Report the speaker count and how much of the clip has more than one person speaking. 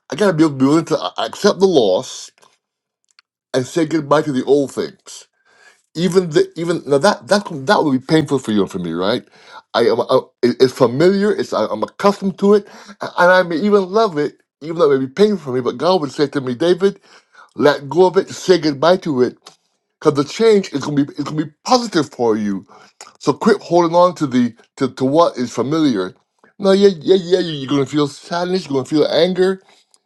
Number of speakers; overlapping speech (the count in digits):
1, no overlap